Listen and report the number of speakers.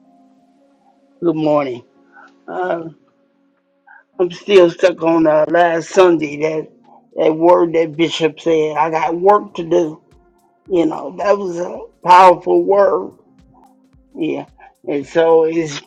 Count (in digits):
1